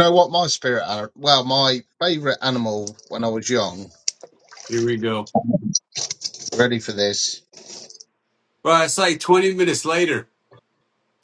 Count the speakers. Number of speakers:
two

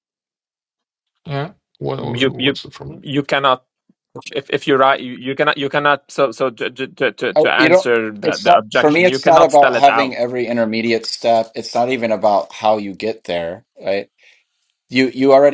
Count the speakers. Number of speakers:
three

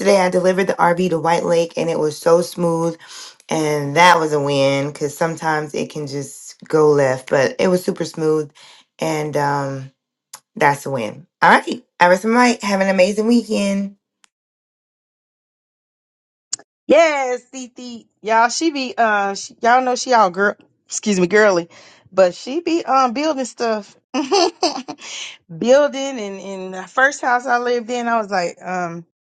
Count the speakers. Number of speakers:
two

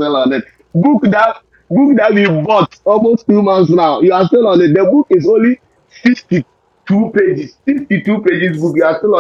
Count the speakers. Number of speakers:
one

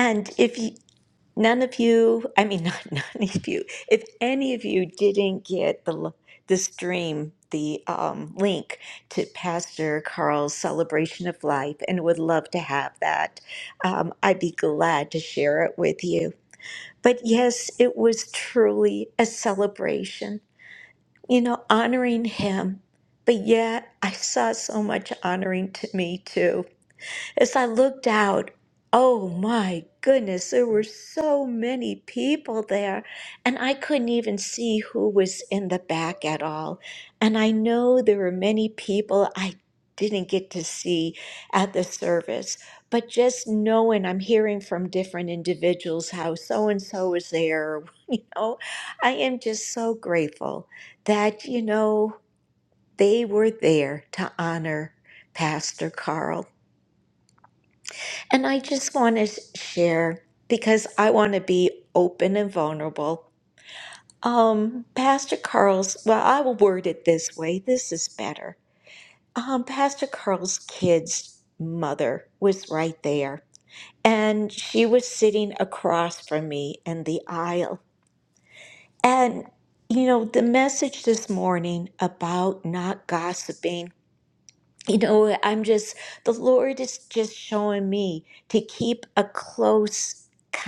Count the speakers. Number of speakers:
one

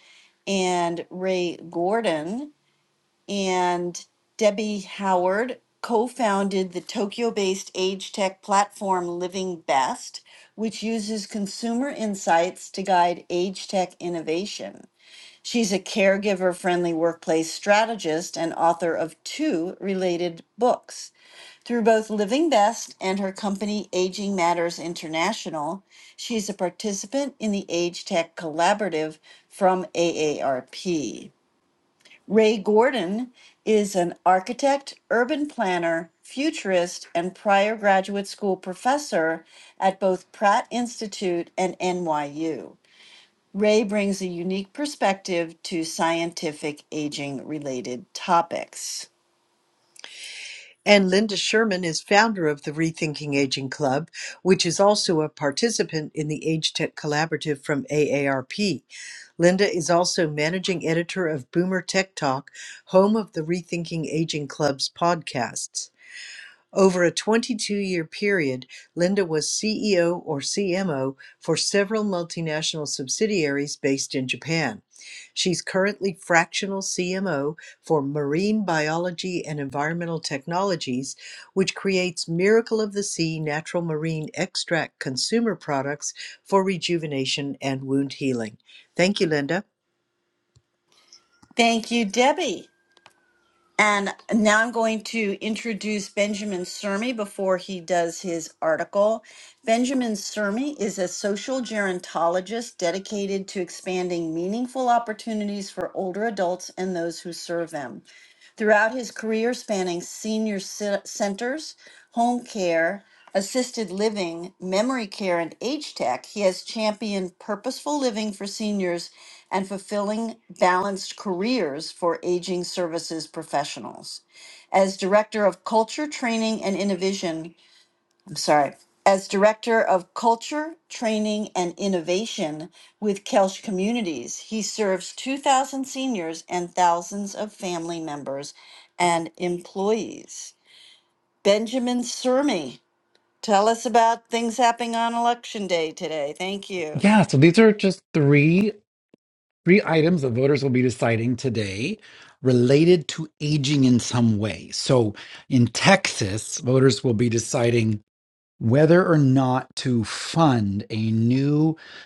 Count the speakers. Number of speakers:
three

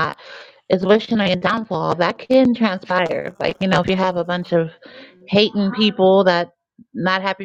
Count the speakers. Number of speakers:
one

